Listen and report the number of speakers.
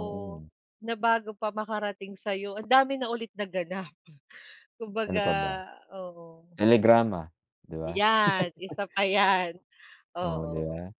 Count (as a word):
two